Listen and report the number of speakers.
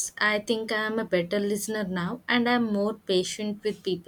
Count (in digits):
1